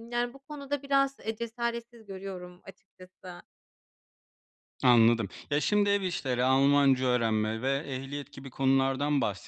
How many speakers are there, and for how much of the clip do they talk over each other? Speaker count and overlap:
2, no overlap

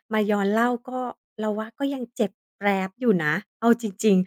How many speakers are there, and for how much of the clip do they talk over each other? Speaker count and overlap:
1, no overlap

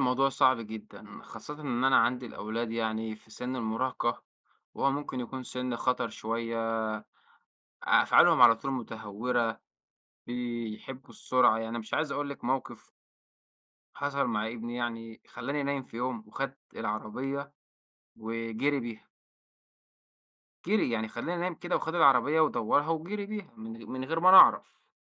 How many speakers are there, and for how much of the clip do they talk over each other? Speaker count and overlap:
1, no overlap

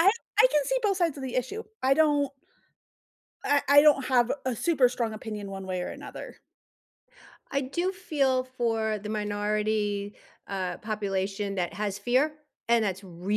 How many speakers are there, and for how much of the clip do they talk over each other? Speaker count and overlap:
2, no overlap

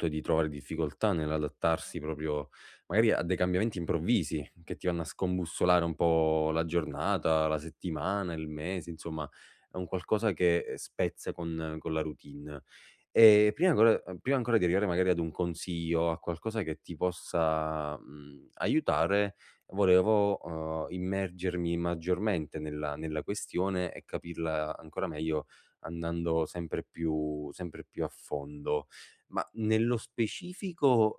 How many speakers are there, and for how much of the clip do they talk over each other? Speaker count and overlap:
1, no overlap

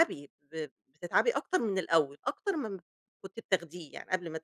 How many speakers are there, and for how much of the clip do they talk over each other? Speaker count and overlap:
1, no overlap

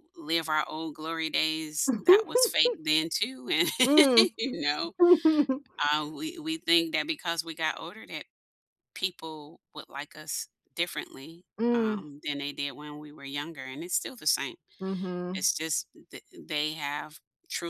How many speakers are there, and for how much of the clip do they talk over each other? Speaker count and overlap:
2, about 3%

